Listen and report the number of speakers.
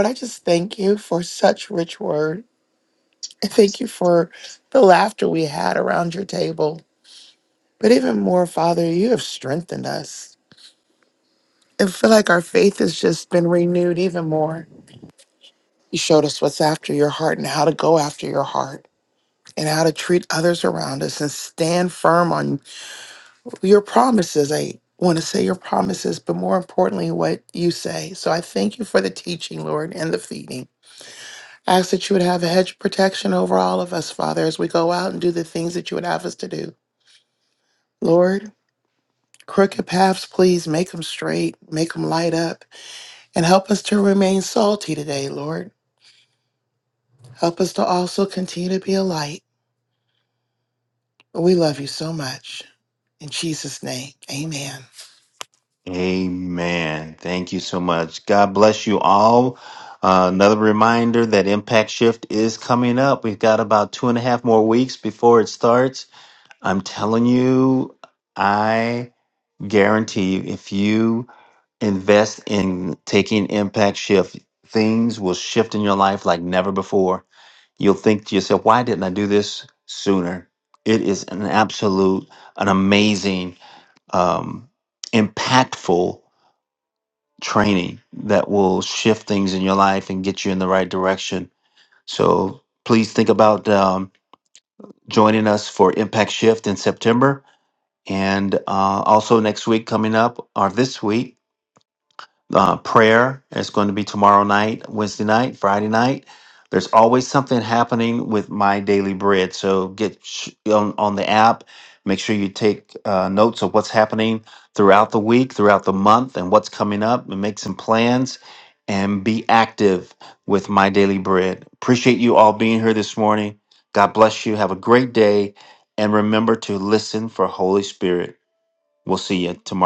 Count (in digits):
2